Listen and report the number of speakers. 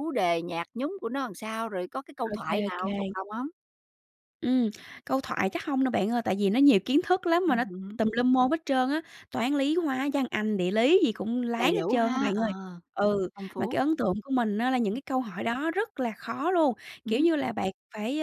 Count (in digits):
2